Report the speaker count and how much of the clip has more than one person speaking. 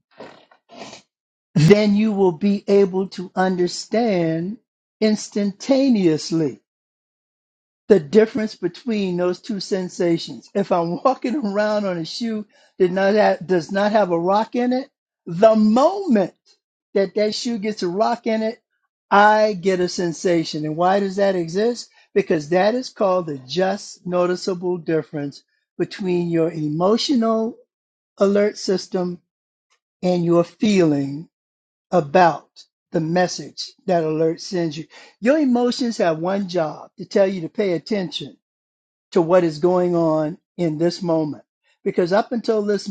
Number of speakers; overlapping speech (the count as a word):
one, no overlap